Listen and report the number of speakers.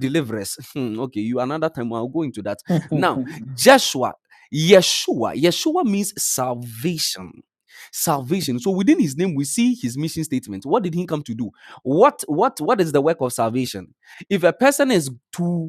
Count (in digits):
1